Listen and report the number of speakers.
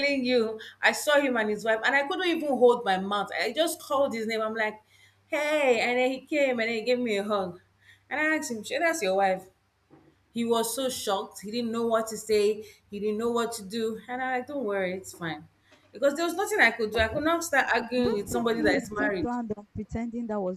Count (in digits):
2